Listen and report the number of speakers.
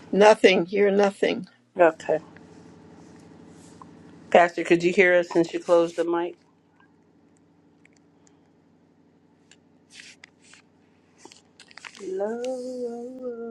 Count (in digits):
2